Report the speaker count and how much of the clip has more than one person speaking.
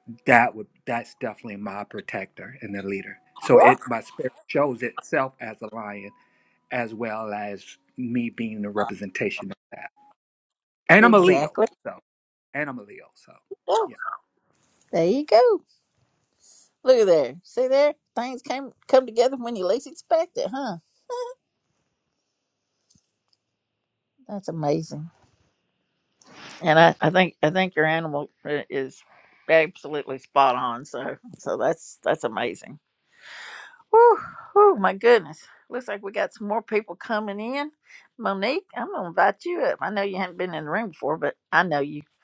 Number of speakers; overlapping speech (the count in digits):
2, about 2%